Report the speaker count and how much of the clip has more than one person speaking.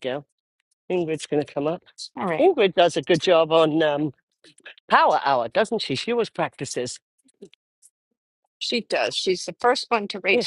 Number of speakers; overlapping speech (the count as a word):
two, about 2%